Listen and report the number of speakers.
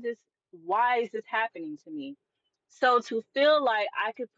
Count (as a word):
one